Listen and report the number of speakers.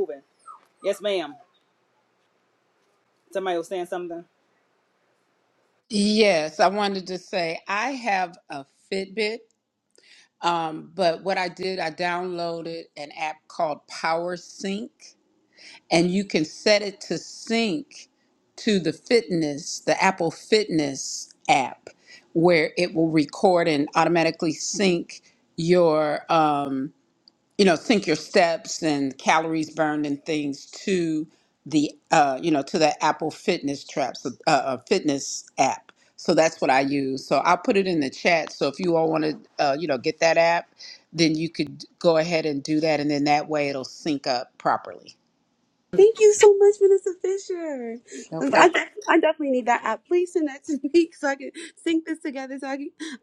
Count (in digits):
3